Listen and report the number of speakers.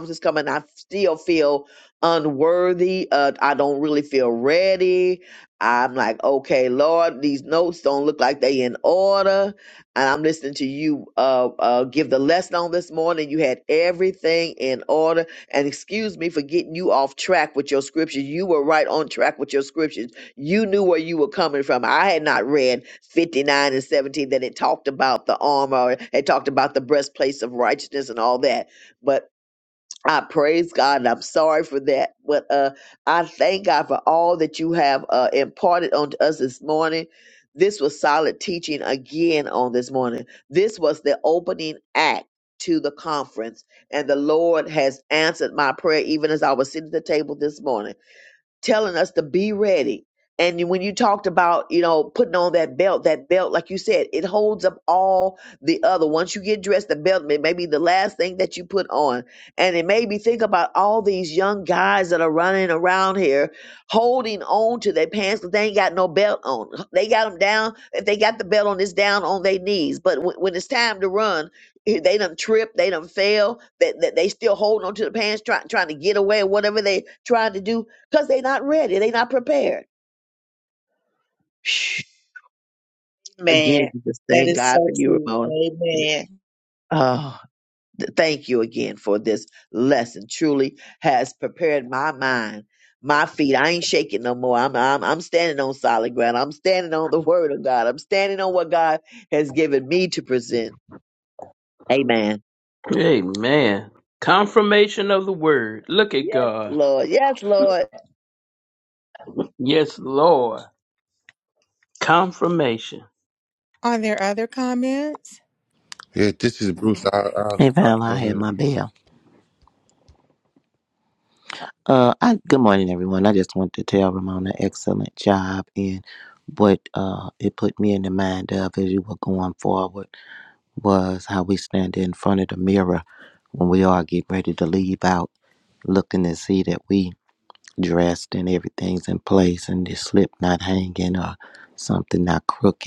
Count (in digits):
6